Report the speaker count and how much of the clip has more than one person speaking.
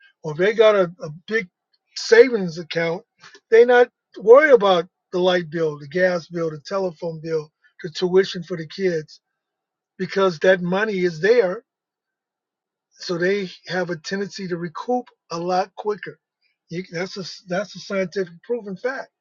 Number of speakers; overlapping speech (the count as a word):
one, no overlap